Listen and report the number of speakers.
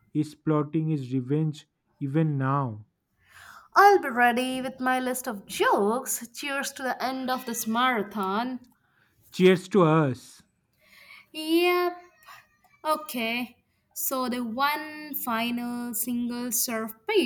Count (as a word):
two